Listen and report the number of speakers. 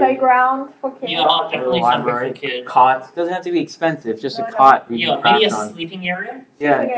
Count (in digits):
3